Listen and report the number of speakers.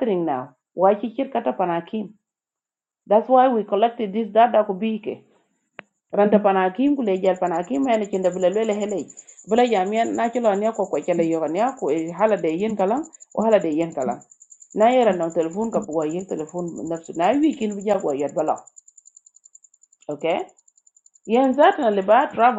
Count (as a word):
one